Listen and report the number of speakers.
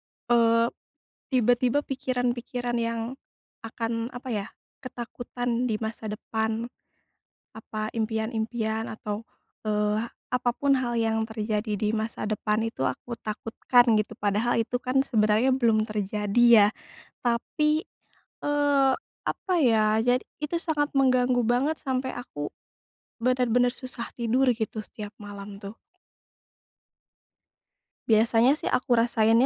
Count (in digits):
1